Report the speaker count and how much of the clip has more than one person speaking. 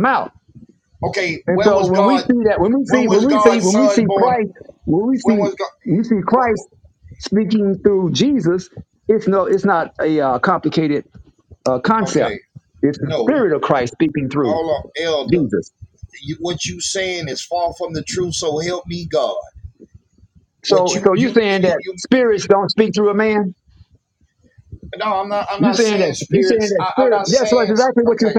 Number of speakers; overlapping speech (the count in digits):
2, about 27%